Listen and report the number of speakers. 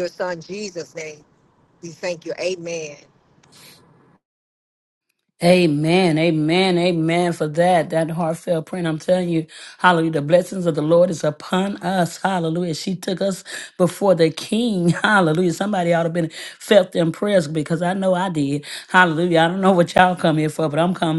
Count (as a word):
two